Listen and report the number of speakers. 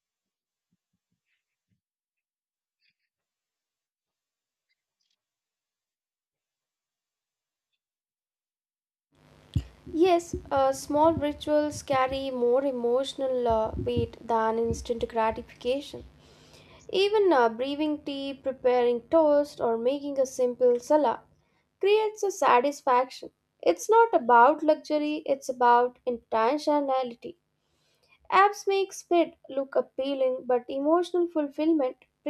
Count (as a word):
one